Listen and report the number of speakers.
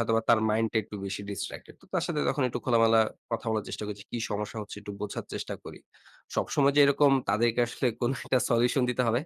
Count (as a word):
one